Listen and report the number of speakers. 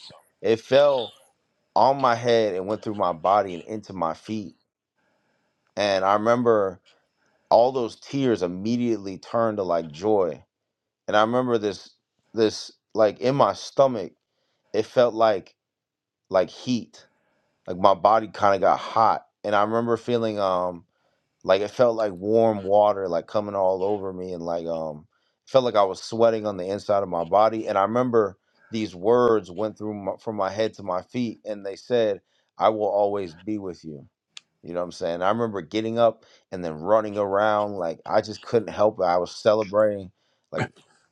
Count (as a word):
one